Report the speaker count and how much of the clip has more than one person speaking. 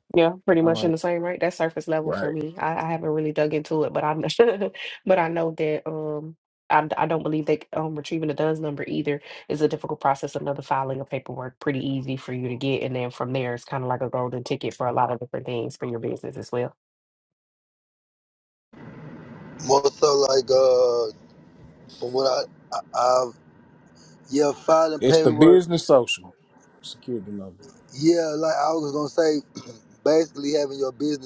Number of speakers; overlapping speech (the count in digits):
3, about 4%